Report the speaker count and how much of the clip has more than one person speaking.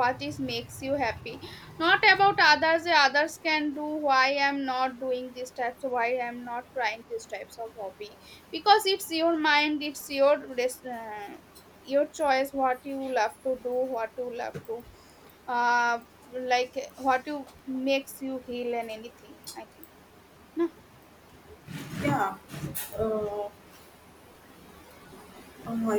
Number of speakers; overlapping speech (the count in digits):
2, no overlap